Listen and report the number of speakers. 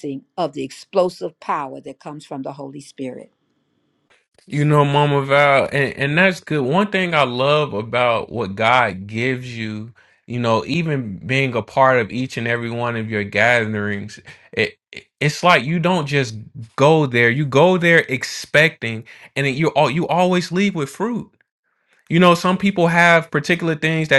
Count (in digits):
2